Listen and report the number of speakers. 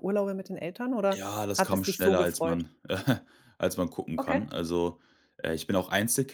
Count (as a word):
two